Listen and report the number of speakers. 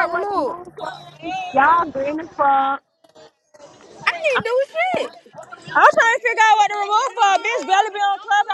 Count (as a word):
three